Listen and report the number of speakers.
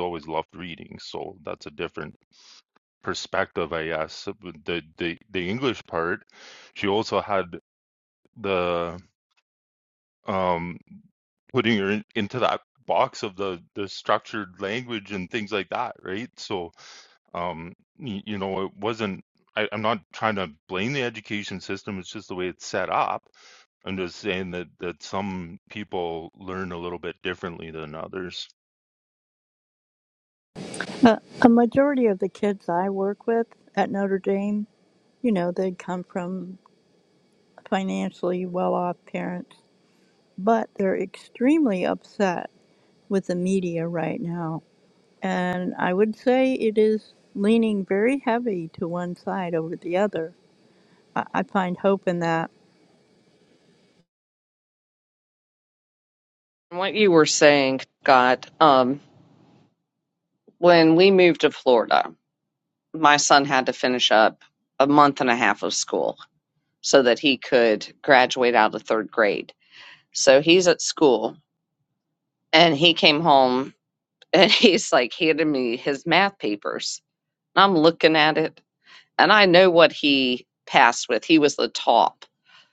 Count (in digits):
3